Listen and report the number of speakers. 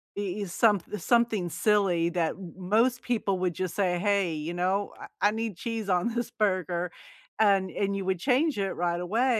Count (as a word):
one